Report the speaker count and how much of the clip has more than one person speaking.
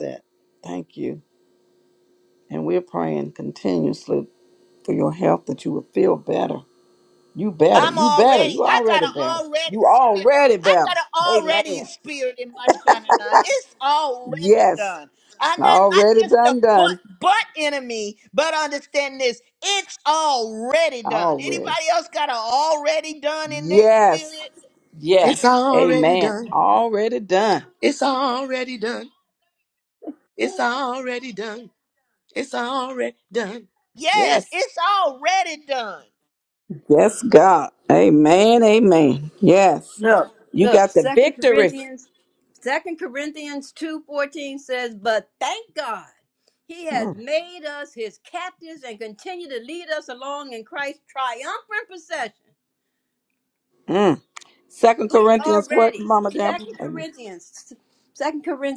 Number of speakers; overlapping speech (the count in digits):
4, about 19%